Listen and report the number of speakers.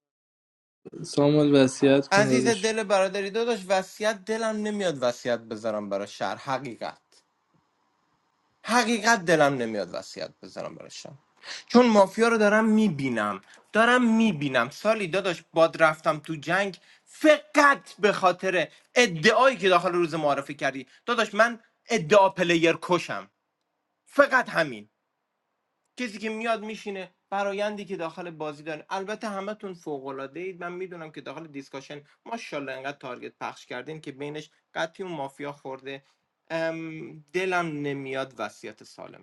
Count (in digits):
2